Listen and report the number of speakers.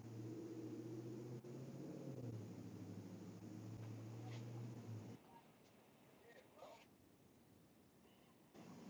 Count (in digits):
0